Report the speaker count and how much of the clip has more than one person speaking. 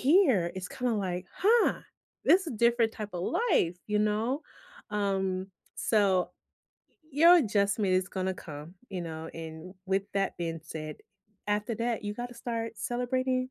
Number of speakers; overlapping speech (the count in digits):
1, no overlap